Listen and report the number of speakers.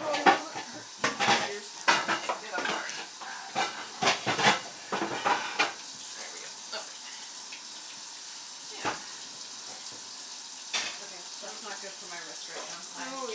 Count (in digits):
2